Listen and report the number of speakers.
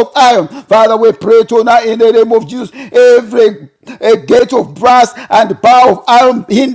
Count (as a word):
one